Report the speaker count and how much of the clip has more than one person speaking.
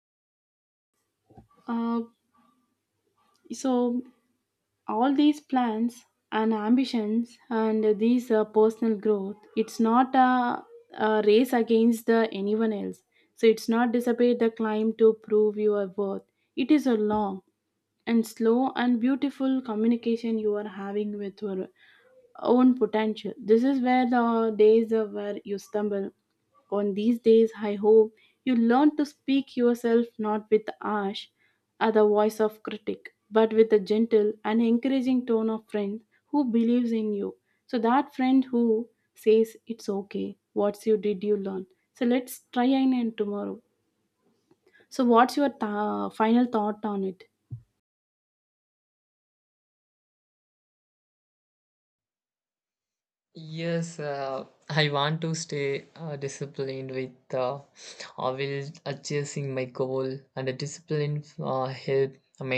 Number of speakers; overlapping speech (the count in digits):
2, no overlap